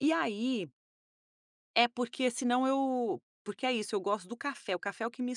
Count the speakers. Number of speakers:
1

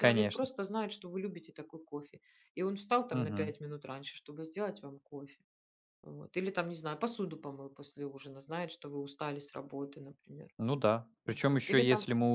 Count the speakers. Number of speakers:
2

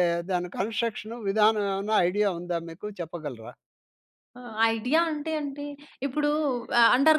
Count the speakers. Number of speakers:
2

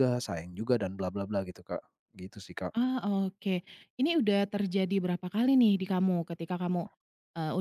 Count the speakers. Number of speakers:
2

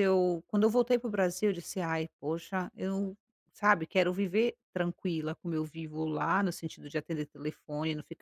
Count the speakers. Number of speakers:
1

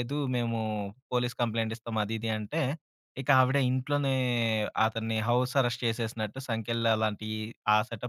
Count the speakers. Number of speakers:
1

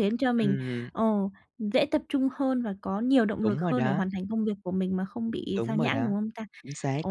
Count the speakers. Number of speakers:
2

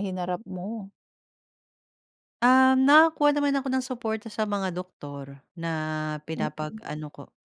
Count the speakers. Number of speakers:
2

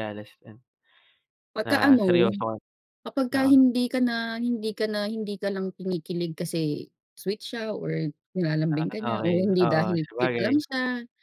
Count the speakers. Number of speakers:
2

